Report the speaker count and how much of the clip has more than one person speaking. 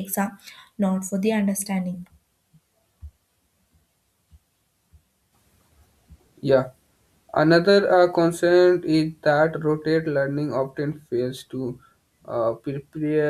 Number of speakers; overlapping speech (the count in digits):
2, no overlap